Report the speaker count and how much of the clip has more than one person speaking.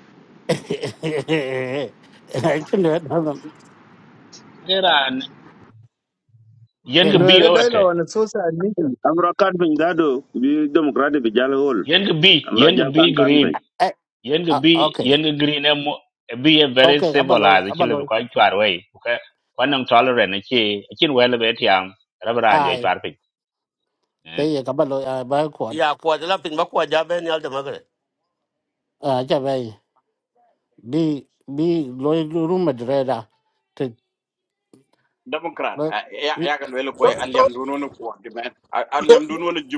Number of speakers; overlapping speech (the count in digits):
6, about 11%